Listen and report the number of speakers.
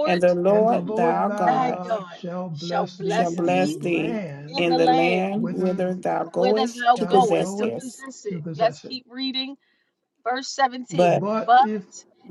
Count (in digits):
3